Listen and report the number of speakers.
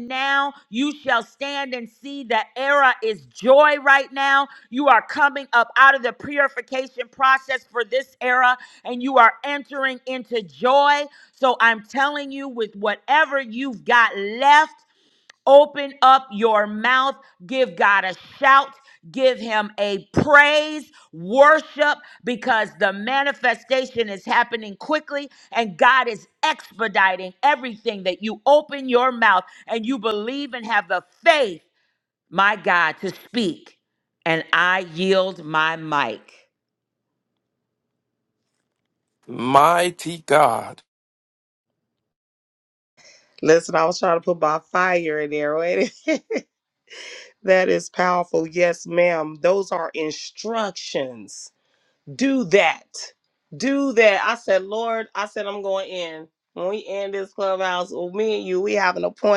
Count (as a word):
three